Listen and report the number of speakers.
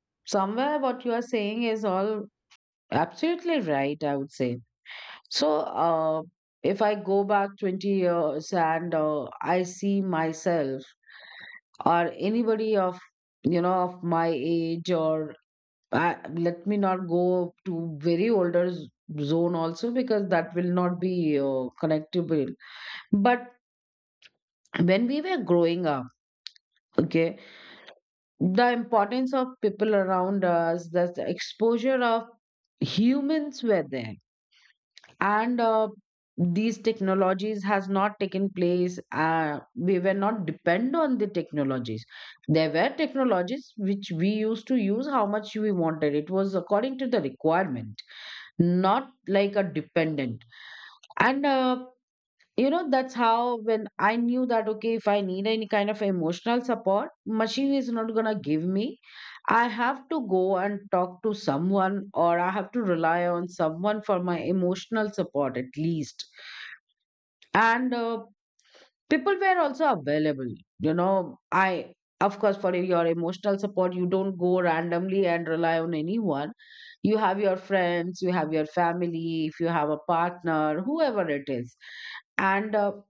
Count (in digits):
1